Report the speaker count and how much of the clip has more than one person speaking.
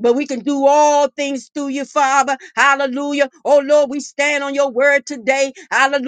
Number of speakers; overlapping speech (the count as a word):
one, no overlap